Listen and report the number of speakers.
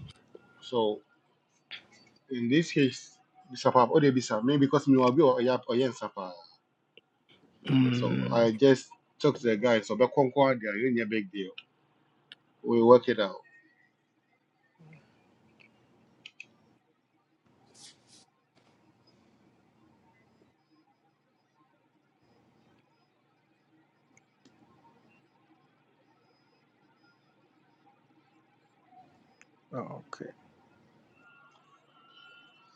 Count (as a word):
two